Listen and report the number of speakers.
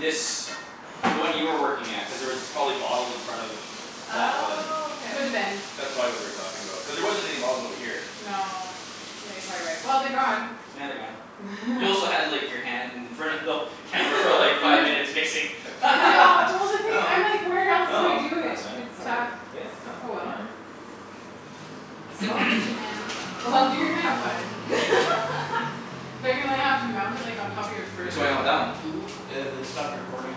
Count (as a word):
four